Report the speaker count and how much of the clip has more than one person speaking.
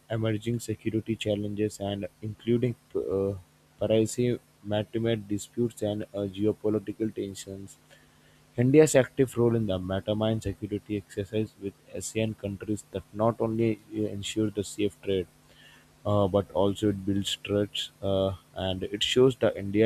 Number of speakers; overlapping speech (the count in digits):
1, no overlap